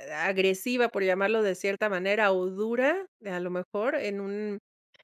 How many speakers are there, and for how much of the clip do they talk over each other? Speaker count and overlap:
1, no overlap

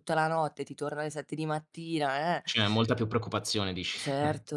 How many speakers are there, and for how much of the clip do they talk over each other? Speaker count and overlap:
2, about 1%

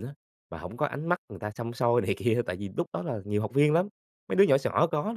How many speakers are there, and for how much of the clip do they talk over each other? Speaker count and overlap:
1, no overlap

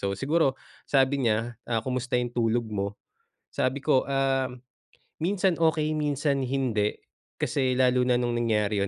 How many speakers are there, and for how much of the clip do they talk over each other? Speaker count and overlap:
1, no overlap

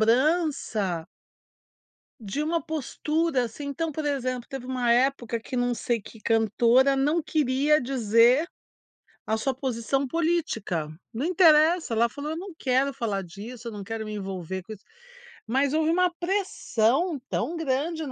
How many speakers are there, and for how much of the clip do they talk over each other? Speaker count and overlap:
1, no overlap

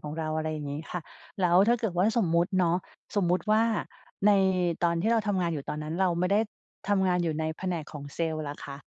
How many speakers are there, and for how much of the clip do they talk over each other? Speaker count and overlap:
1, no overlap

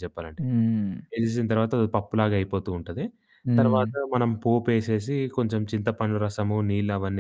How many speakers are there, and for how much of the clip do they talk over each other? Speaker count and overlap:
2, about 6%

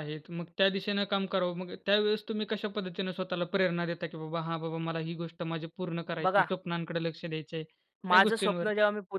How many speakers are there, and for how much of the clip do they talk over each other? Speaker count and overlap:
2, about 10%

